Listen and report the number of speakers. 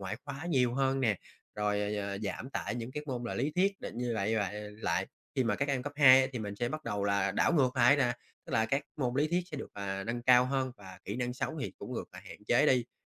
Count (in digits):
1